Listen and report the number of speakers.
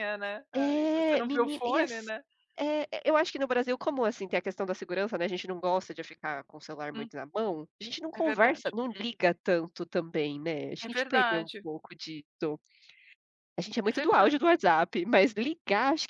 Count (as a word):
two